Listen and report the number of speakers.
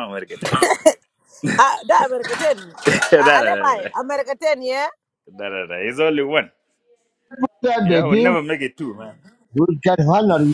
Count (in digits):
3